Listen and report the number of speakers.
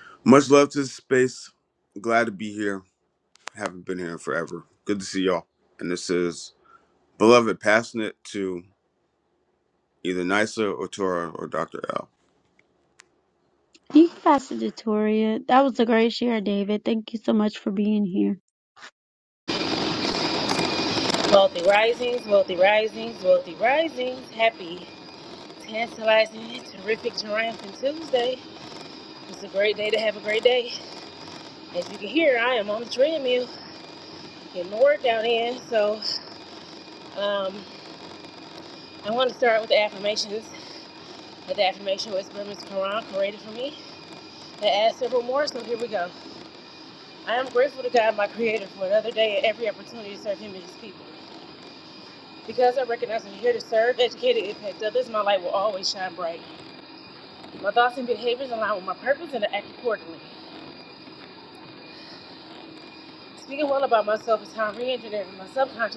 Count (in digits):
3